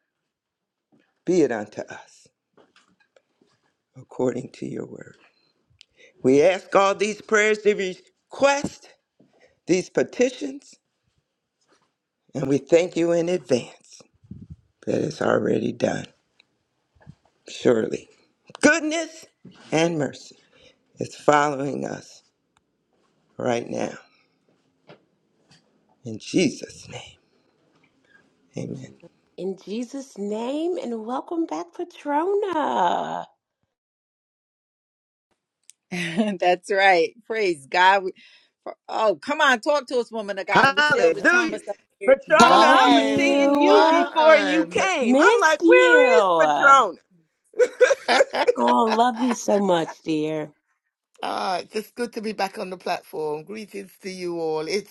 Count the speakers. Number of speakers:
4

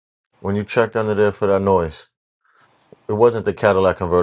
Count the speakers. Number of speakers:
1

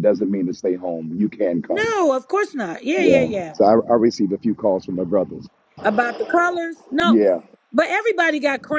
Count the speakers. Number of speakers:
2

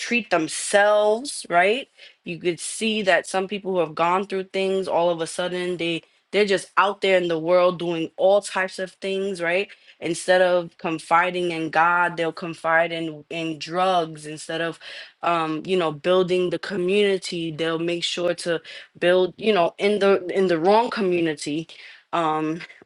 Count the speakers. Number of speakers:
1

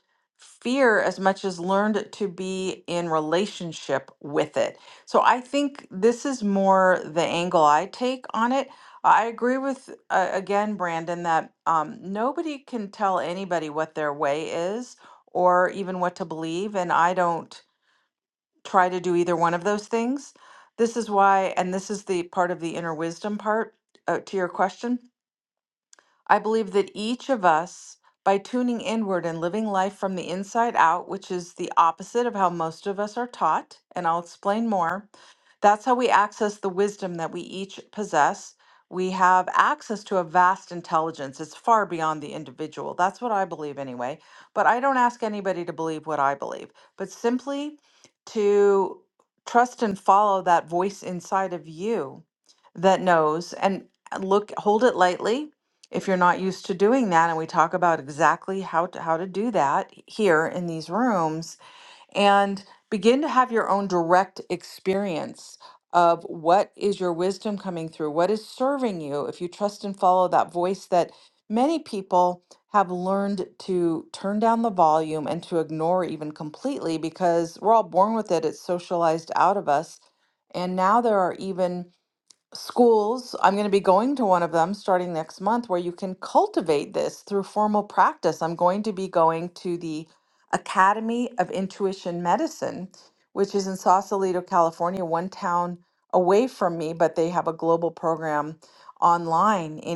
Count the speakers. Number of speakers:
1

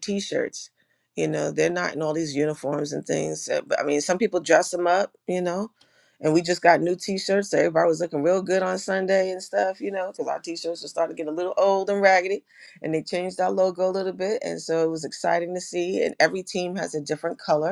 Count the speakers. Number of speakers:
1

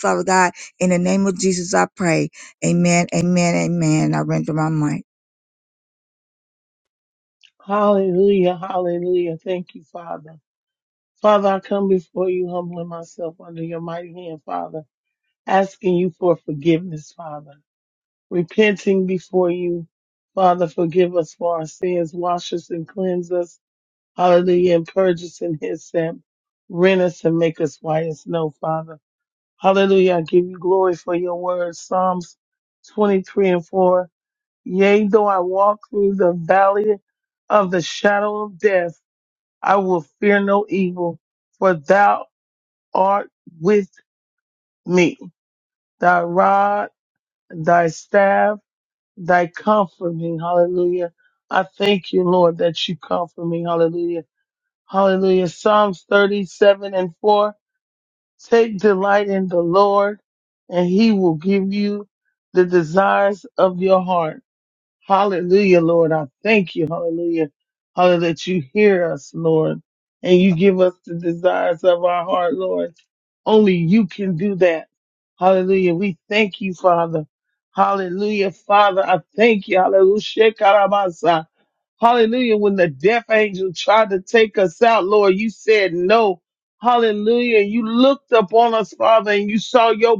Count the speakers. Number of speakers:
2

